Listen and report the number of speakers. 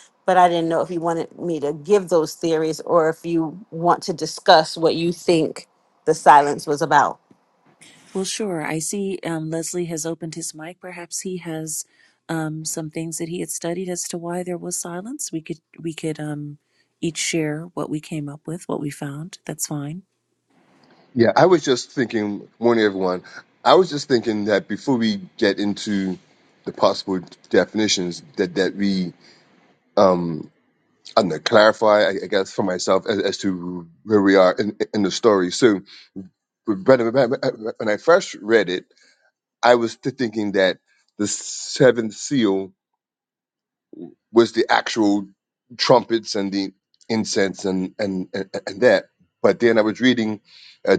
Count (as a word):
three